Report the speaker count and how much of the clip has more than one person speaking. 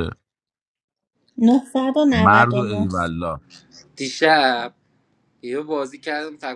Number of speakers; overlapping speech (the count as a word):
three, about 12%